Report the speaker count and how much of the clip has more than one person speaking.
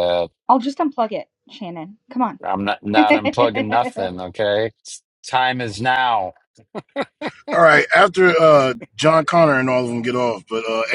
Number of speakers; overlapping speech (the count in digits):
3, no overlap